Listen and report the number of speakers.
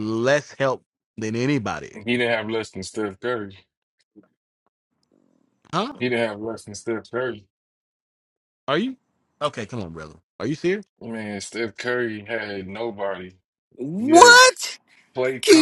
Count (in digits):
3